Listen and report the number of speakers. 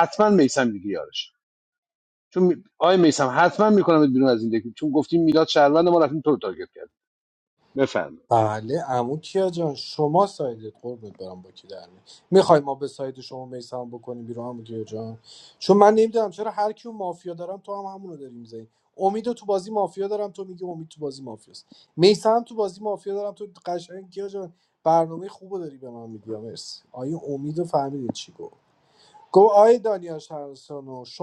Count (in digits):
2